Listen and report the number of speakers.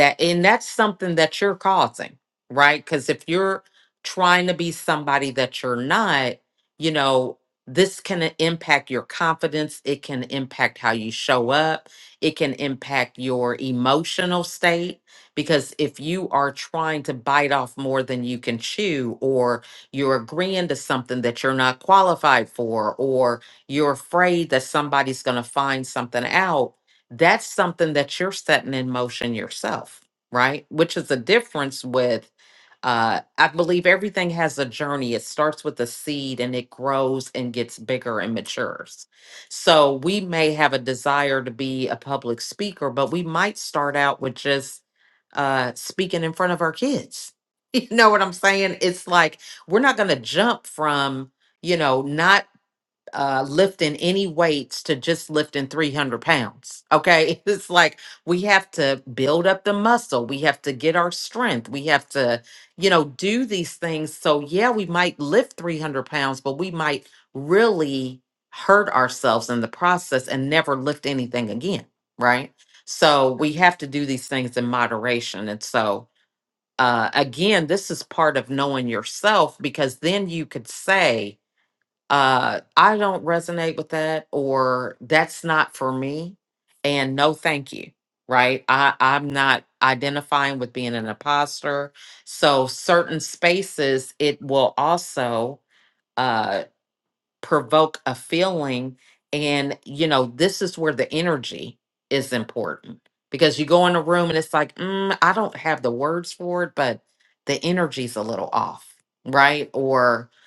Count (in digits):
1